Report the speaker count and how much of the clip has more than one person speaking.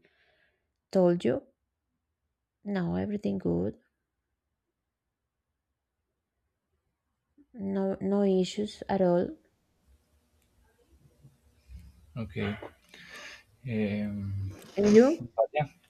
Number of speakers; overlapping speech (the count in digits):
2, no overlap